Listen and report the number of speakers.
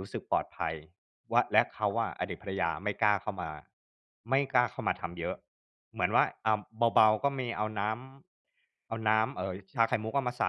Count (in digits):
1